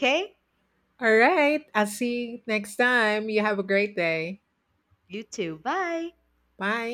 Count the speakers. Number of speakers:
two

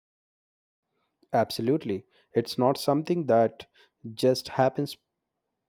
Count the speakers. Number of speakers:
one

